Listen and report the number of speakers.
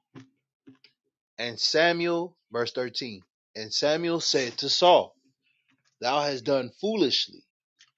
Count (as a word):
one